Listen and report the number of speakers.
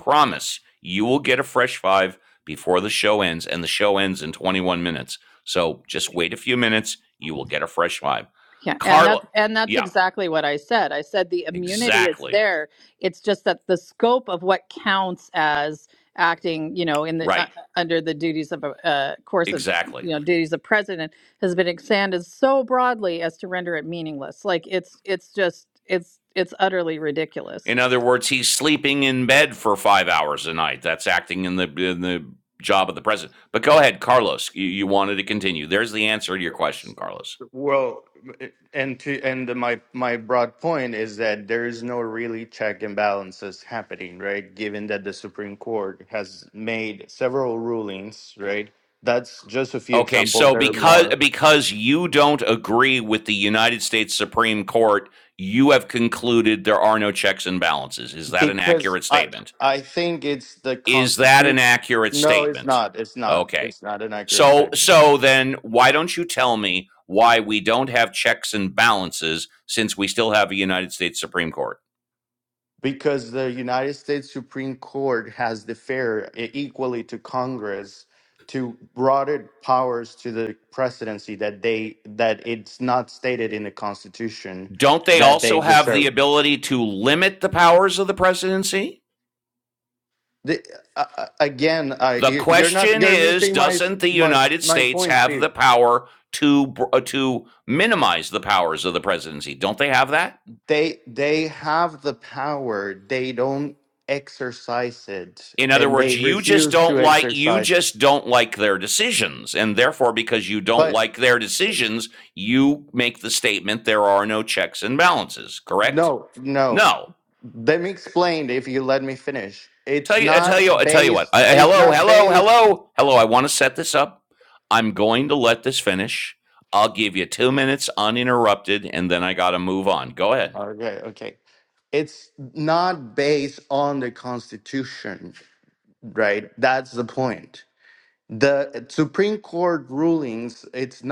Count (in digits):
3